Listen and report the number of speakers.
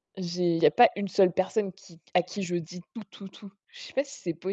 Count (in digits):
1